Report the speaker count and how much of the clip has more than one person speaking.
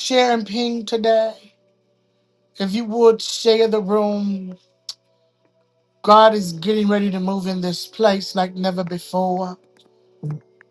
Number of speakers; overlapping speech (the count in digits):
1, no overlap